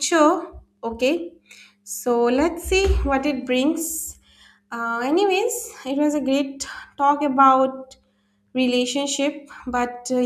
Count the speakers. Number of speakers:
1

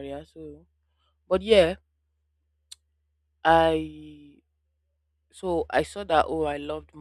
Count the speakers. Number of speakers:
1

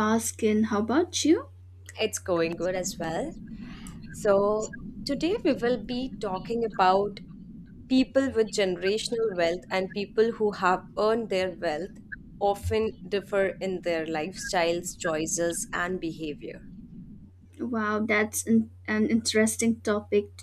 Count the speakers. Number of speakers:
2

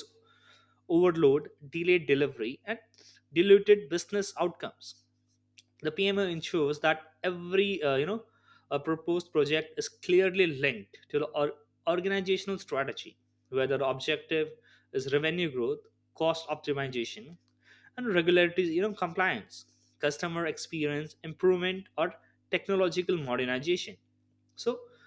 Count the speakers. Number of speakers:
1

